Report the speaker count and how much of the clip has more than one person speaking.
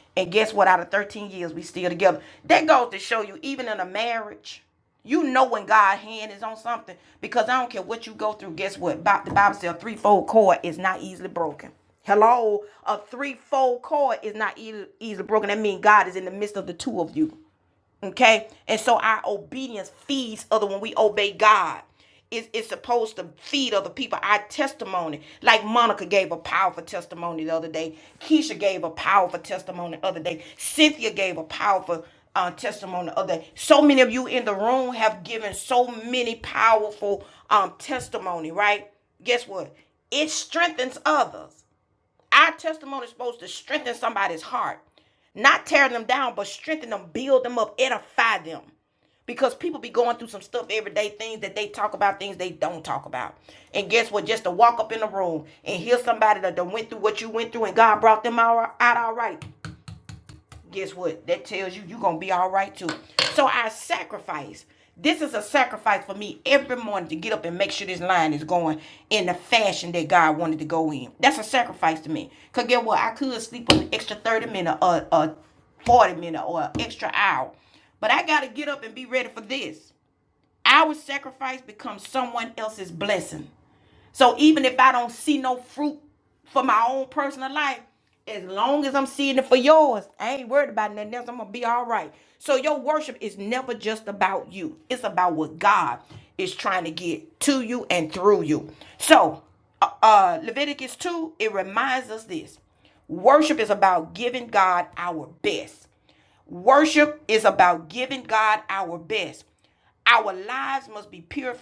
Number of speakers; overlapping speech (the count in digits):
1, no overlap